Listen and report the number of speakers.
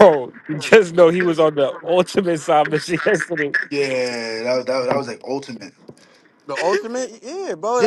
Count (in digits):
3